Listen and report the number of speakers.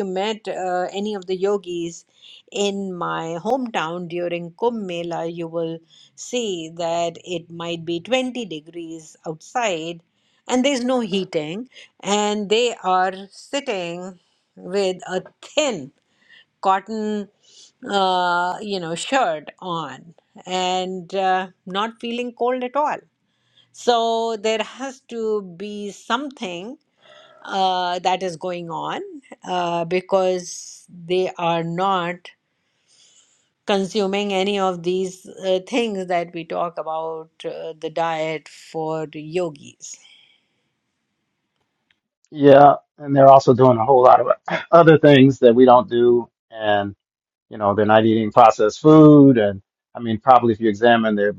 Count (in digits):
2